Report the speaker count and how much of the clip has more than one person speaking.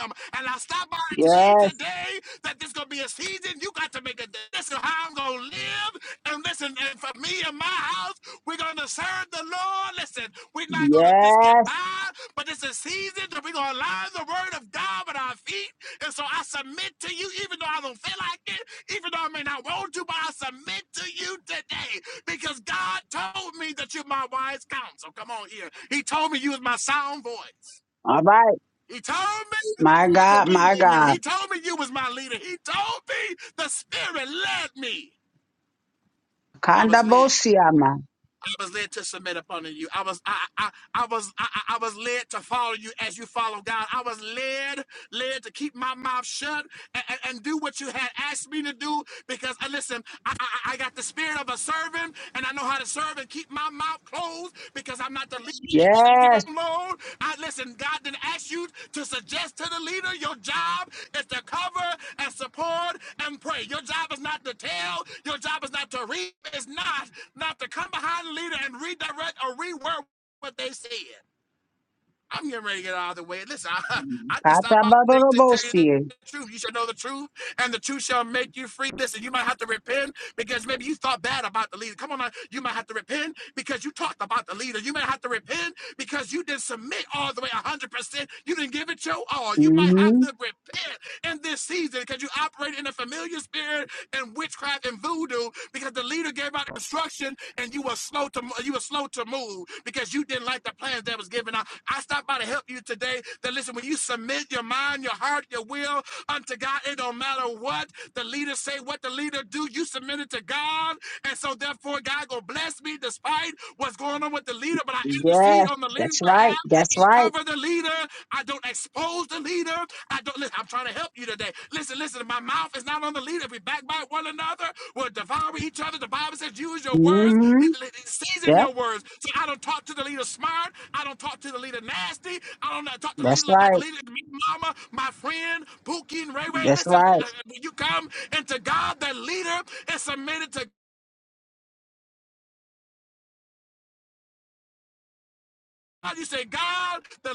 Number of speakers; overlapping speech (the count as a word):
two, about 7%